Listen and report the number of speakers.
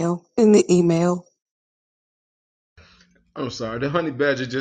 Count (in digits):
2